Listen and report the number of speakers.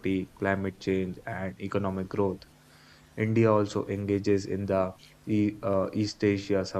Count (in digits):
1